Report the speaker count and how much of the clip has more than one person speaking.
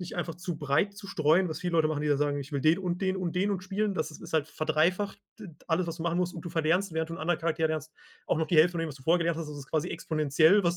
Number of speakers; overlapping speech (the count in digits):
1, no overlap